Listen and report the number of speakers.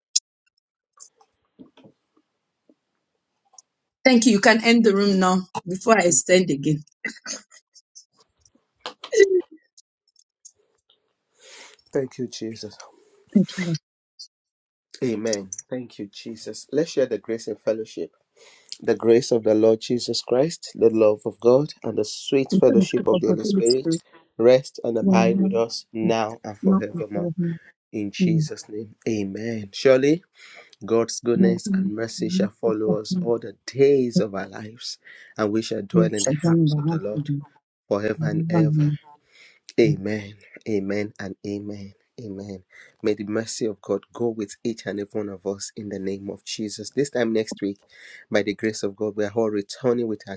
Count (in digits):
2